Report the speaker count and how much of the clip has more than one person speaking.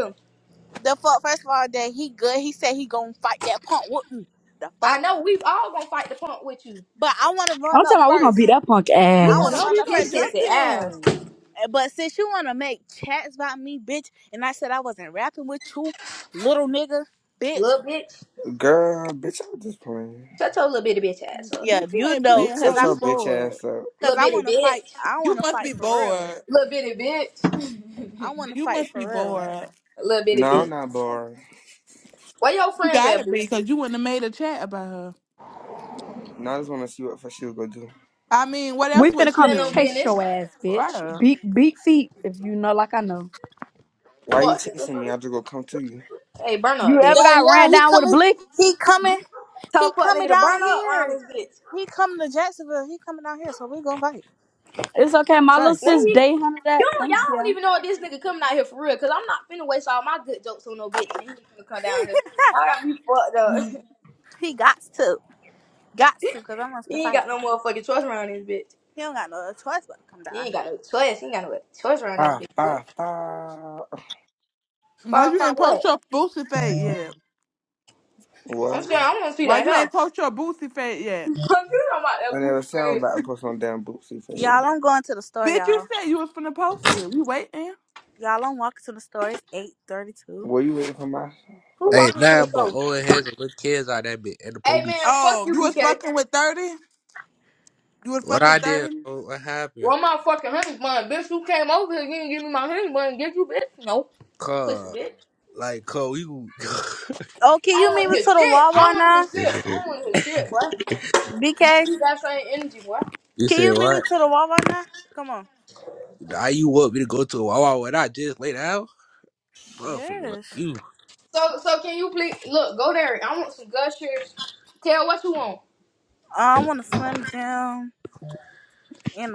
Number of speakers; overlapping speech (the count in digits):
6, about 20%